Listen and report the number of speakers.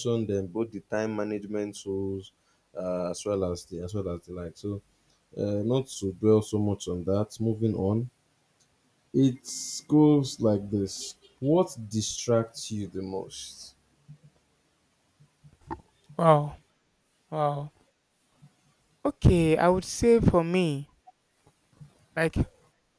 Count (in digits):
2